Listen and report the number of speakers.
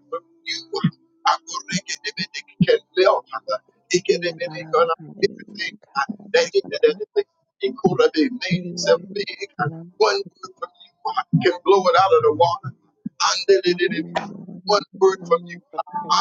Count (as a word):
two